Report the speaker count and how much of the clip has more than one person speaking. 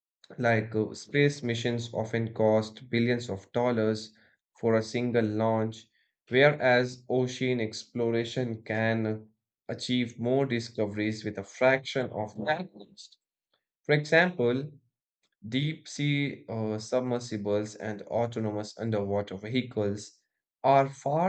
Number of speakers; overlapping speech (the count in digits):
1, no overlap